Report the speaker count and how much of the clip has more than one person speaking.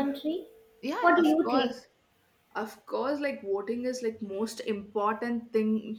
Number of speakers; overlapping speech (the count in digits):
2, about 13%